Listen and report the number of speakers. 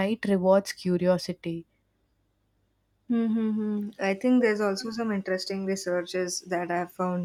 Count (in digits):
2